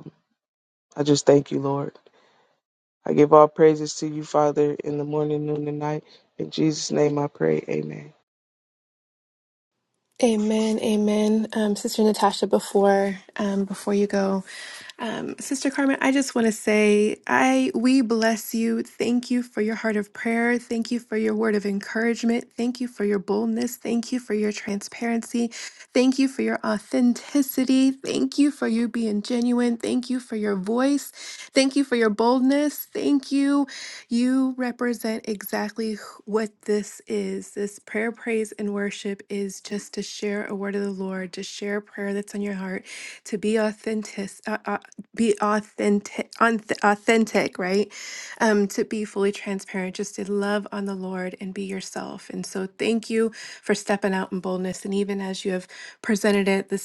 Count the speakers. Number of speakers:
2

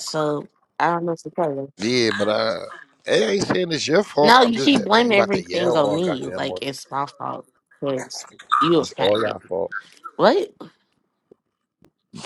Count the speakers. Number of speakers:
2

